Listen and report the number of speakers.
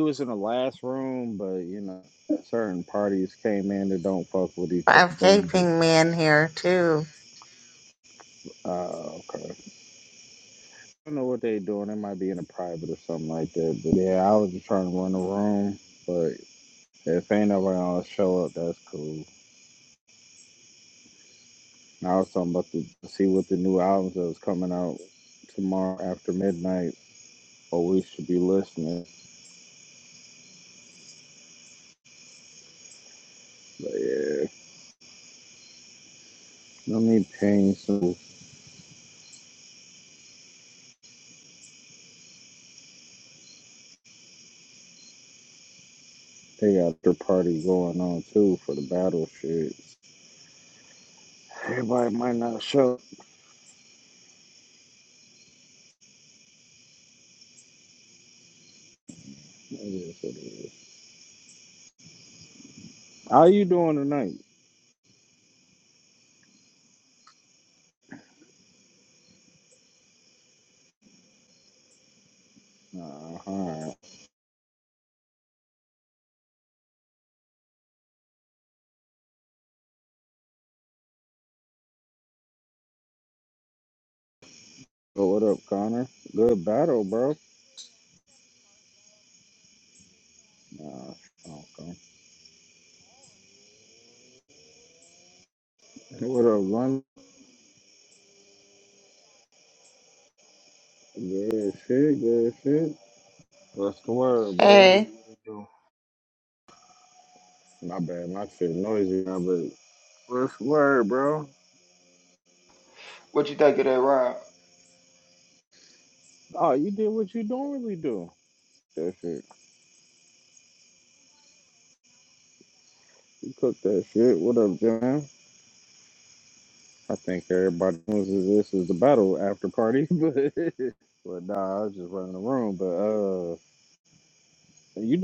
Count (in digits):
3